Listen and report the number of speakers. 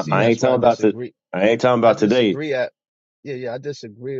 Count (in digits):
2